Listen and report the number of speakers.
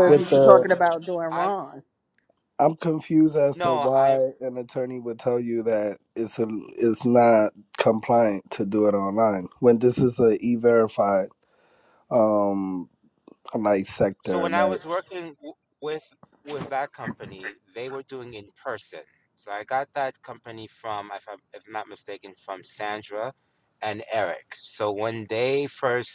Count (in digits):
3